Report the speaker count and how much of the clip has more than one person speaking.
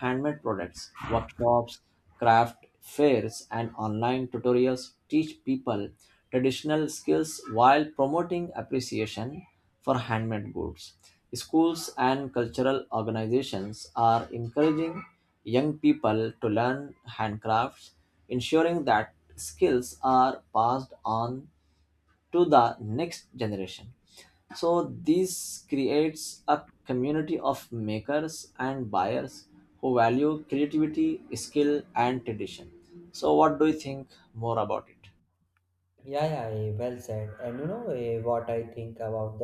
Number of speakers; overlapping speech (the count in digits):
2, no overlap